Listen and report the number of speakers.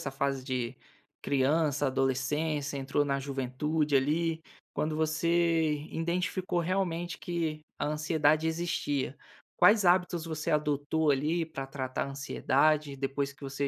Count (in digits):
1